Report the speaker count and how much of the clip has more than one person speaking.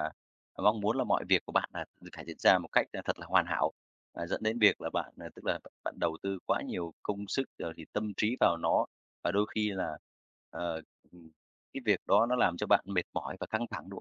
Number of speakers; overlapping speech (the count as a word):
one, no overlap